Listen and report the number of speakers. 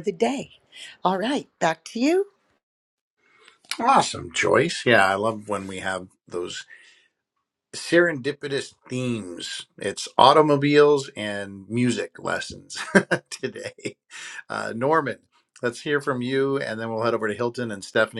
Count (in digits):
2